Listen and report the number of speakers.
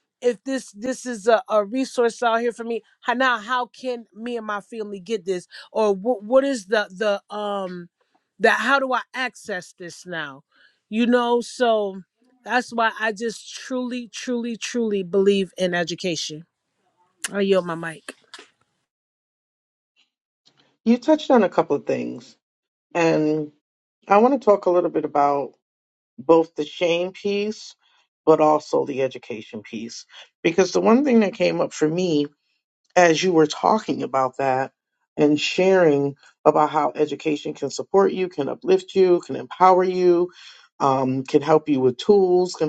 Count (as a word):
two